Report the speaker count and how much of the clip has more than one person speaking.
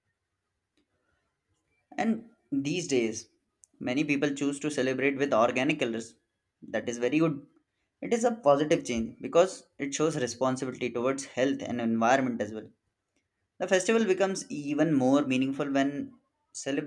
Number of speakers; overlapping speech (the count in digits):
1, no overlap